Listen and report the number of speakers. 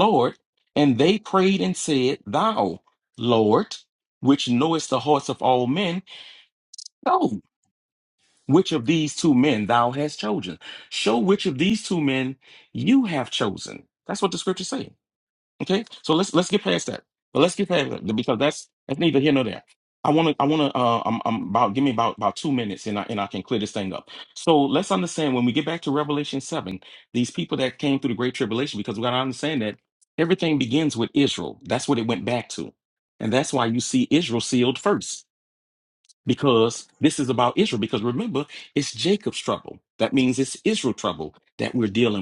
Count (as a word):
one